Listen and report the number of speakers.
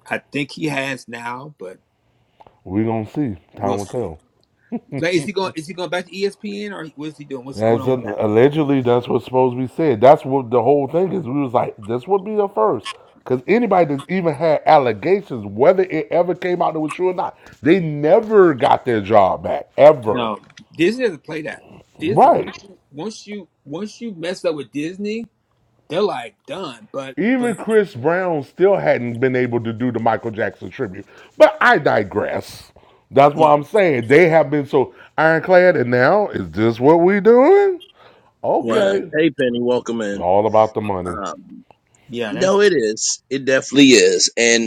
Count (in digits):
3